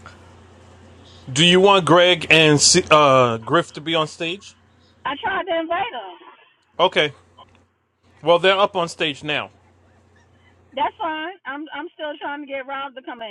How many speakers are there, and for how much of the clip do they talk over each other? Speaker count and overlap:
2, no overlap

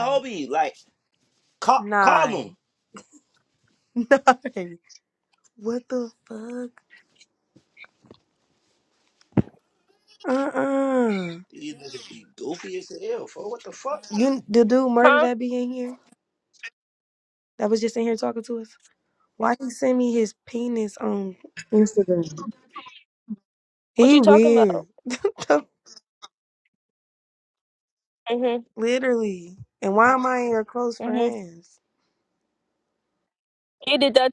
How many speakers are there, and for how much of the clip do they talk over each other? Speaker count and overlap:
3, about 5%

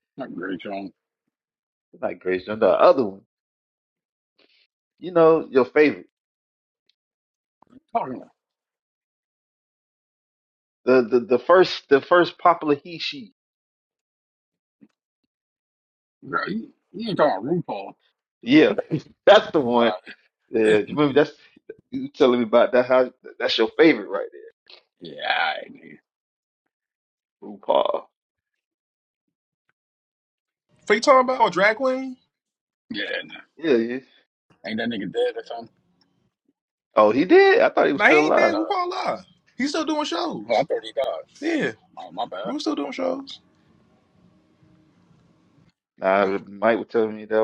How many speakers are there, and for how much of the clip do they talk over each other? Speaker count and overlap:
3, about 2%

